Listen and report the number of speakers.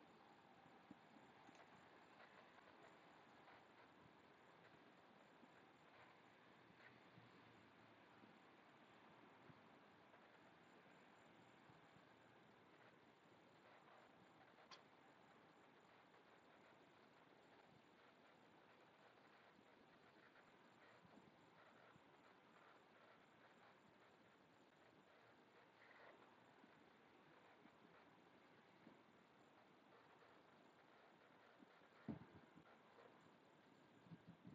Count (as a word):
zero